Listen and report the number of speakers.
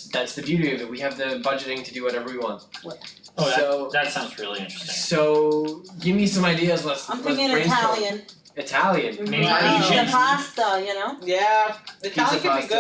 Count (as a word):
four